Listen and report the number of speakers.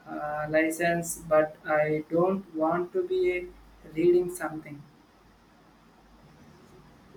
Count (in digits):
1